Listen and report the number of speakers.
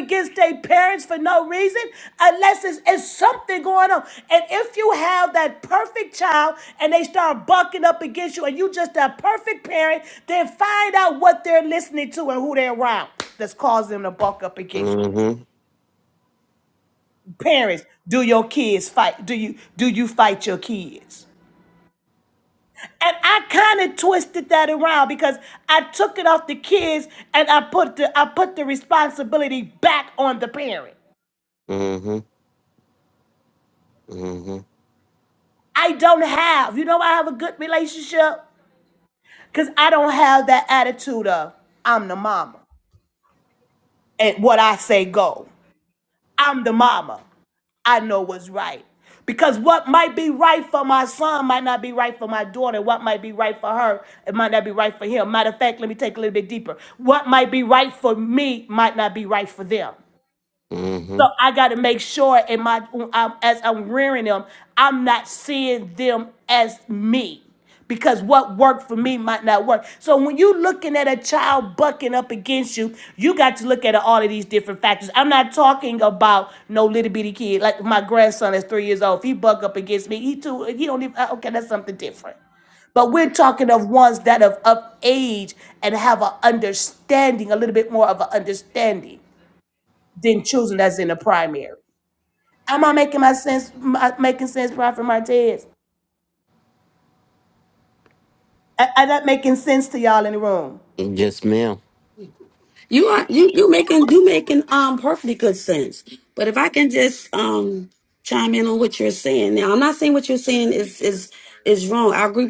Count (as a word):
three